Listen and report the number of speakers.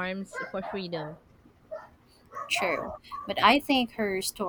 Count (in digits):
2